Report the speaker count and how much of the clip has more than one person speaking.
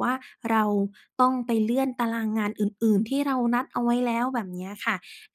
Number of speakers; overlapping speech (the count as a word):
one, no overlap